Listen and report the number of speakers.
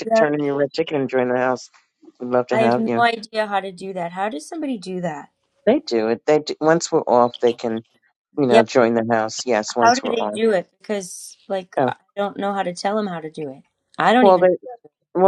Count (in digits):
2